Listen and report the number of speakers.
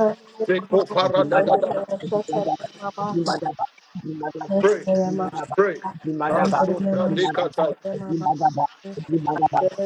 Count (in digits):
3